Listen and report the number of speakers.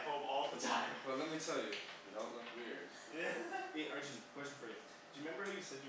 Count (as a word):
three